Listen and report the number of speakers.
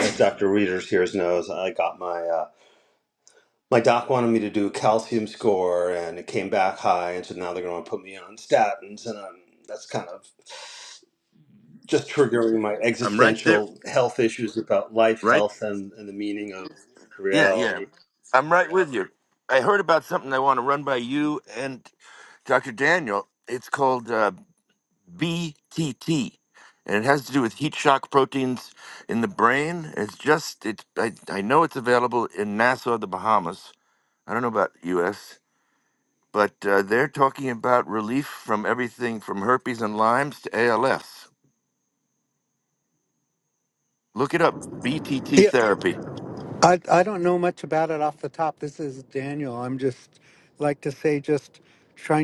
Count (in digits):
3